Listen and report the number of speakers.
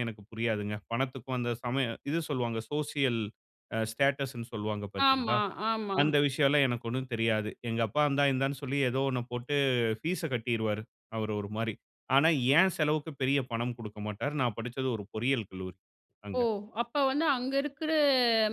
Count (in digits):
2